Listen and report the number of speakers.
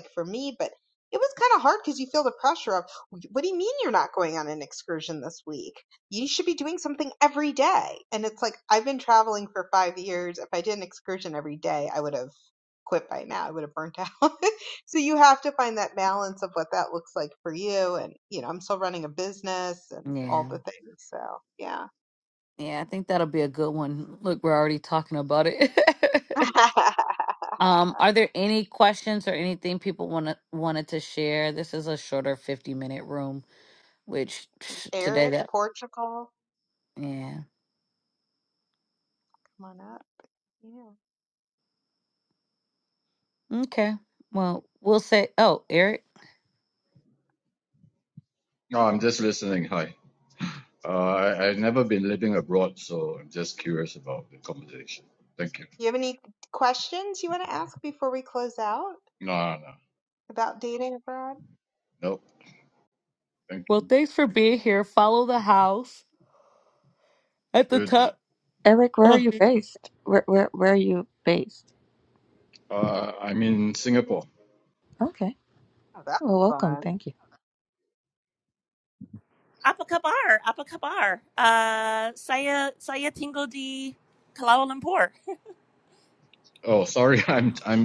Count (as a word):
five